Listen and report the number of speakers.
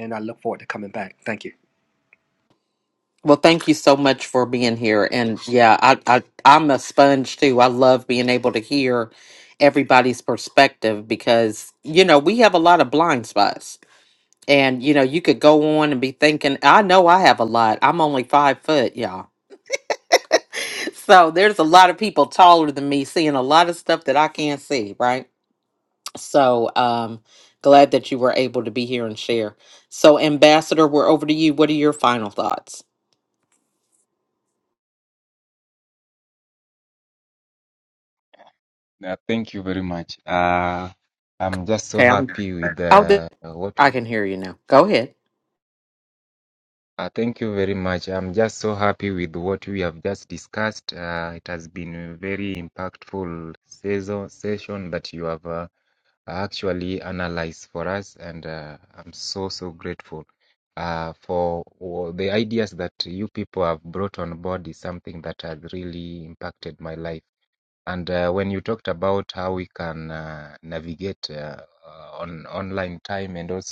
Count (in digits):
3